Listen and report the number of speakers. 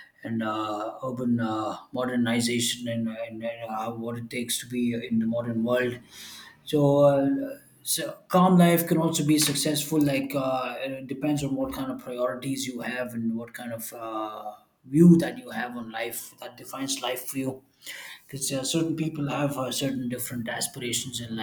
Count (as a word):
one